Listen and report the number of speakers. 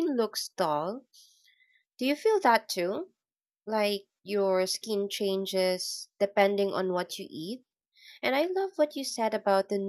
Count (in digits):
1